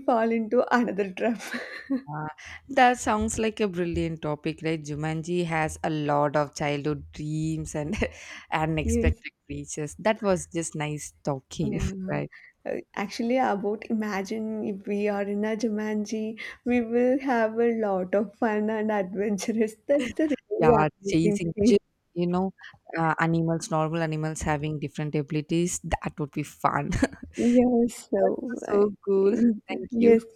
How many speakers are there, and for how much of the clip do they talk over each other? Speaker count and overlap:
2, about 10%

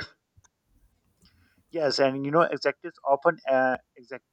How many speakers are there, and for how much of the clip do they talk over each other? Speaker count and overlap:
1, no overlap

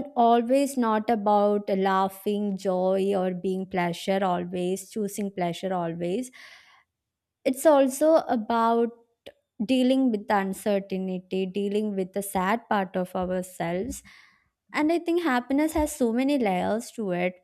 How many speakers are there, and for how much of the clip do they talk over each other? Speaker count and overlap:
1, no overlap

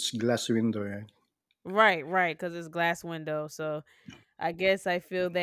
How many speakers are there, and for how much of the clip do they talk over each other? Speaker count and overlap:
2, no overlap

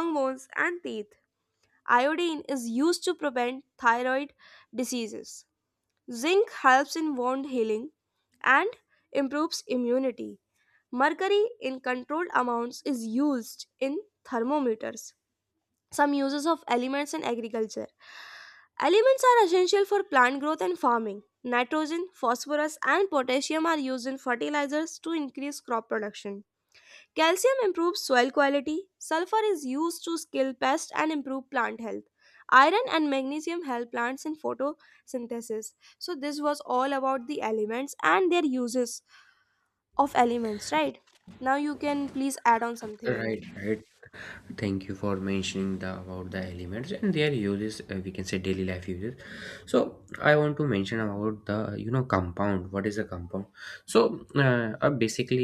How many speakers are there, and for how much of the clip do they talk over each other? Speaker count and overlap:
2, about 1%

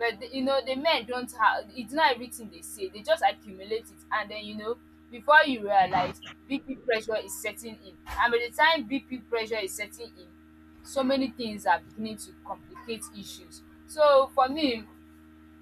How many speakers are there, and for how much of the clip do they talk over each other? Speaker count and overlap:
1, no overlap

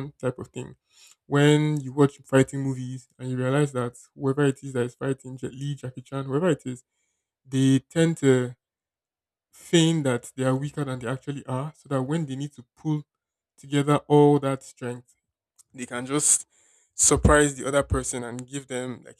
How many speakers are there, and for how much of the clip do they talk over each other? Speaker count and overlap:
1, no overlap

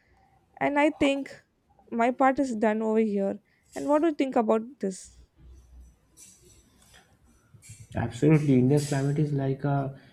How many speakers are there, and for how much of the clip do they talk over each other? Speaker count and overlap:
2, no overlap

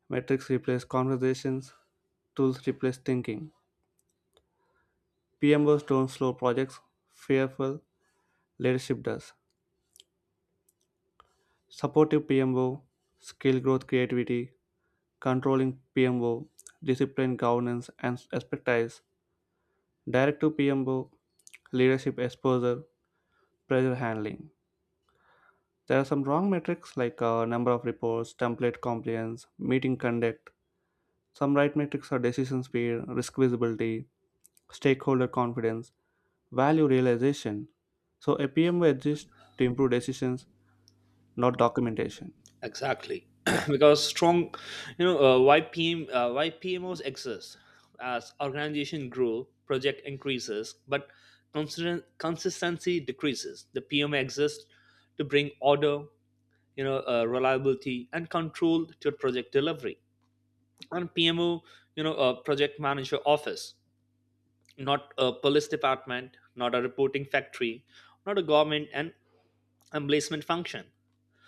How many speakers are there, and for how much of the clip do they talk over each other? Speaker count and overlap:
2, under 1%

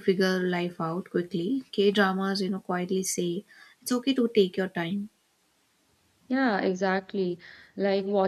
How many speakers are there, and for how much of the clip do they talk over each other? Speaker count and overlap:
2, no overlap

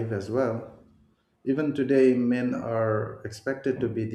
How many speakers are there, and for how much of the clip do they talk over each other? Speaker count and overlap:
1, no overlap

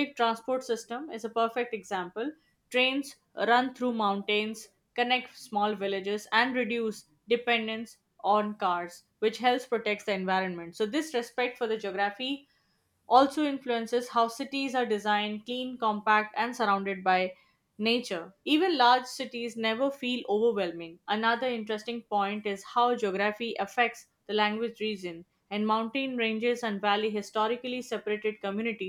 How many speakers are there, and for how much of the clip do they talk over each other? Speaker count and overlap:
1, no overlap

